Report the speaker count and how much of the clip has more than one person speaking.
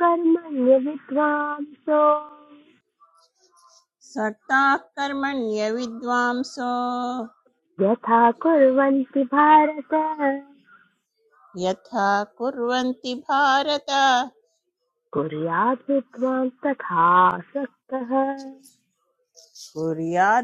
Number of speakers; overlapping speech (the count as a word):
two, no overlap